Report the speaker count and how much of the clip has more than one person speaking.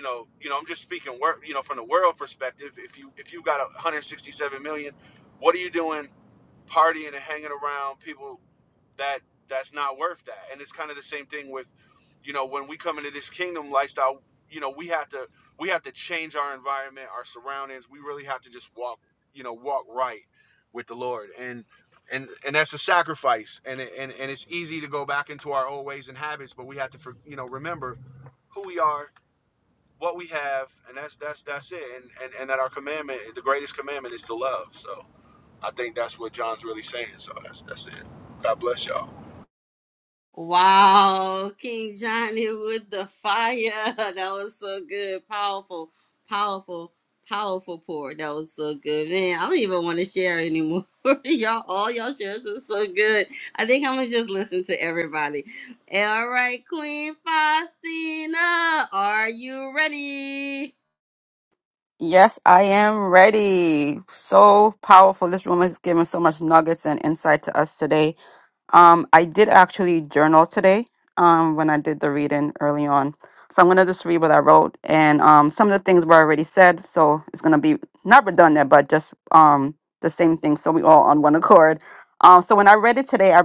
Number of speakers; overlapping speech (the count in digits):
3, no overlap